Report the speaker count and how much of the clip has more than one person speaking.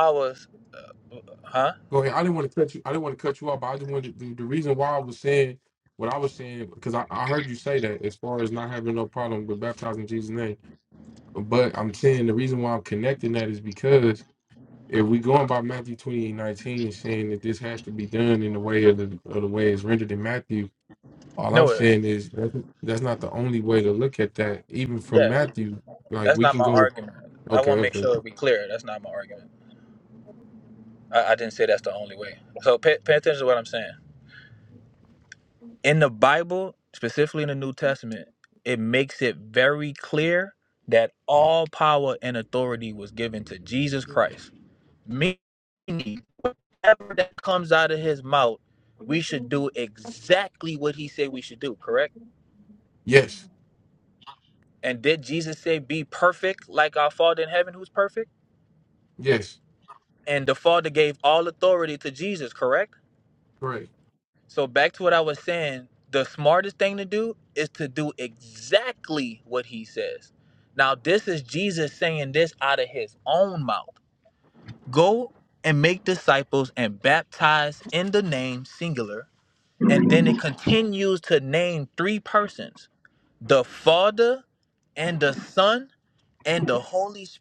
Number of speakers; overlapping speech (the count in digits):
2, about 2%